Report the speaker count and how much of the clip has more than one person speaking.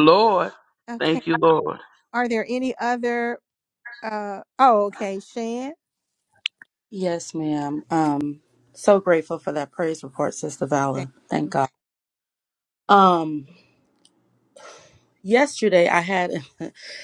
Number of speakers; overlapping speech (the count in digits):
3, about 2%